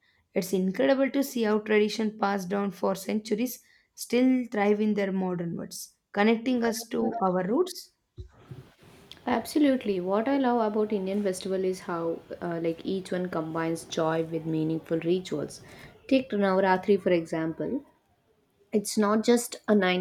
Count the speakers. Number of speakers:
two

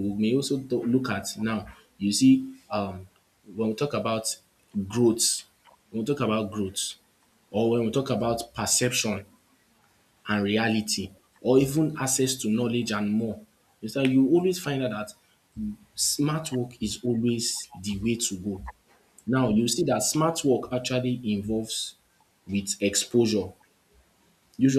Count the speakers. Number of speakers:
one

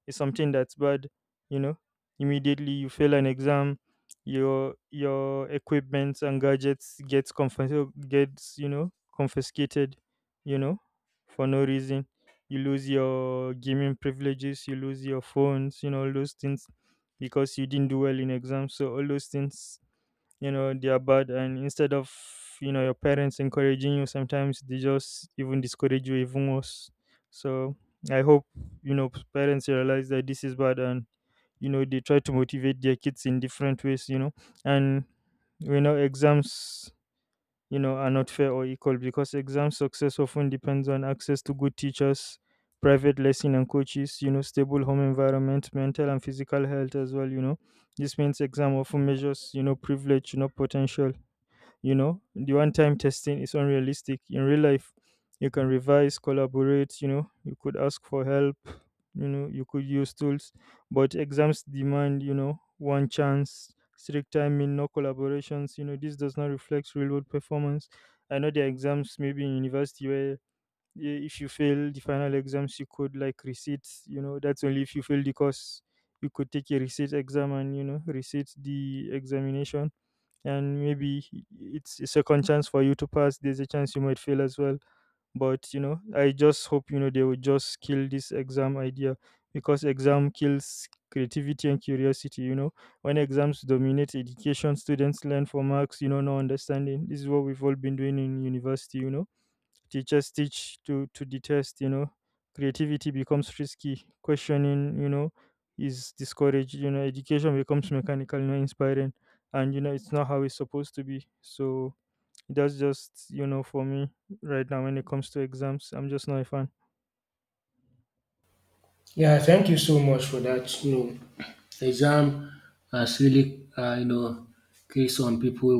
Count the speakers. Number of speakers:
two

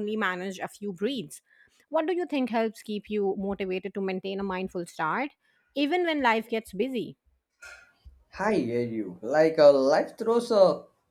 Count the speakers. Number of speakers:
two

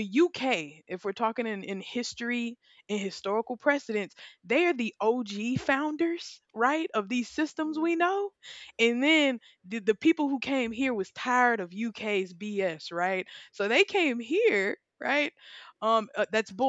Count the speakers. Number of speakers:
one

